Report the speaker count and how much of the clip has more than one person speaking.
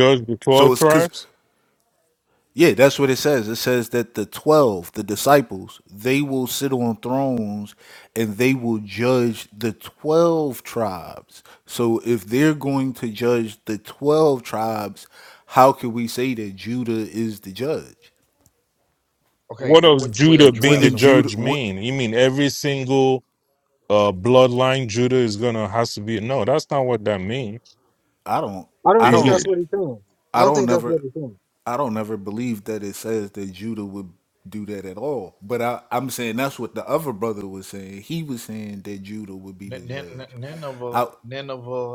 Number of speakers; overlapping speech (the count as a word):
four, about 11%